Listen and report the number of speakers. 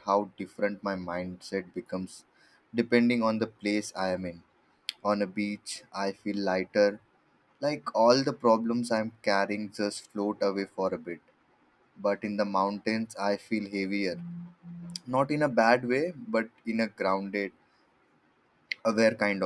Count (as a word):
one